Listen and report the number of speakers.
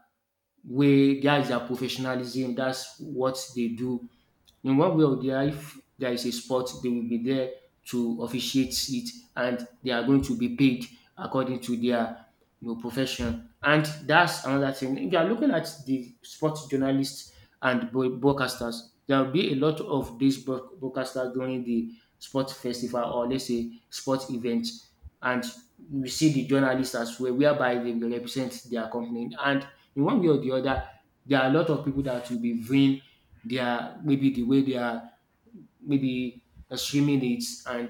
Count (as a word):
one